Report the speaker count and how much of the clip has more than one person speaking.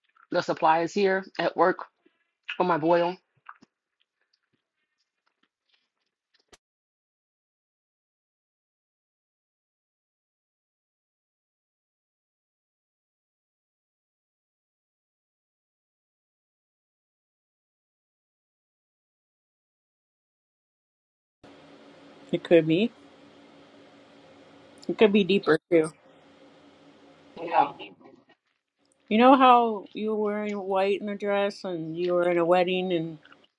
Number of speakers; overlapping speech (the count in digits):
2, no overlap